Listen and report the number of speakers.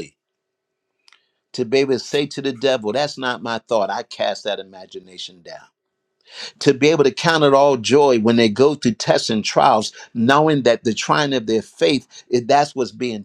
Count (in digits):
1